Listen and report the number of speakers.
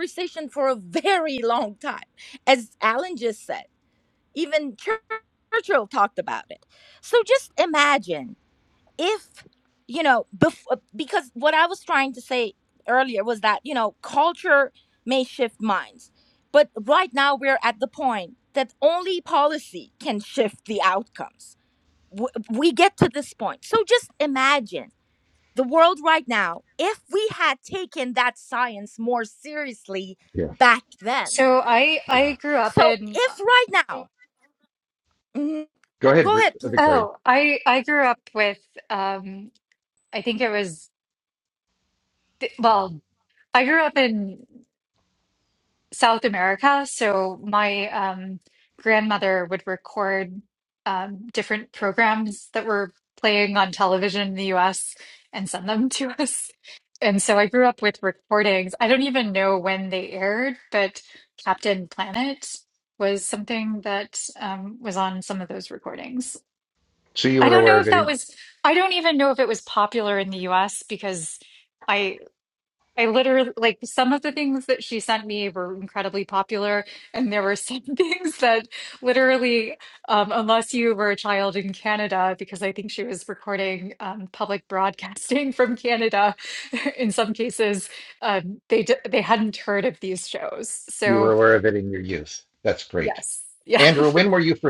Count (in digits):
3